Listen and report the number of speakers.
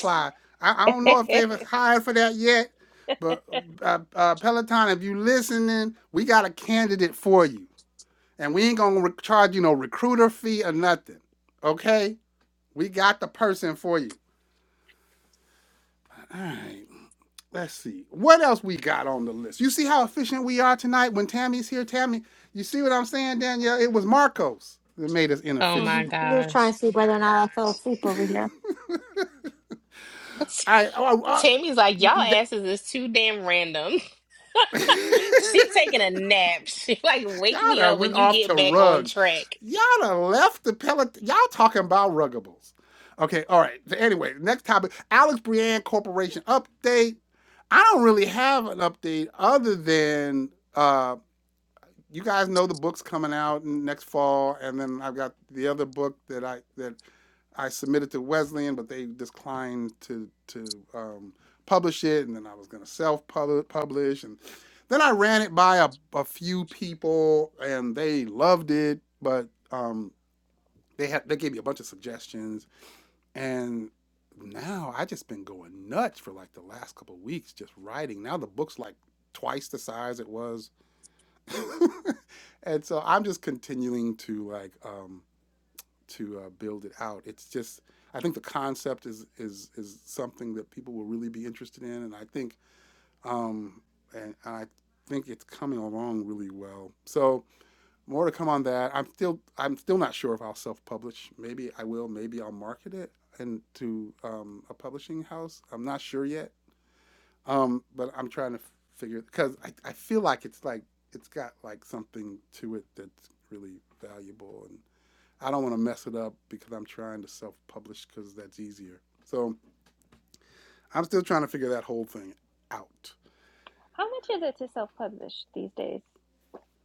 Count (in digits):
4